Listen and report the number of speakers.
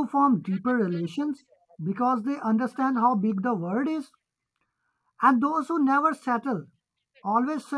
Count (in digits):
1